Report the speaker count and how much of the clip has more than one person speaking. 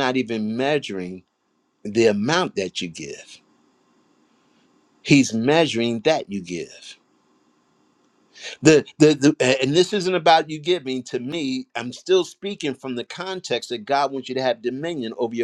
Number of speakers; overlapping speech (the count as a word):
one, no overlap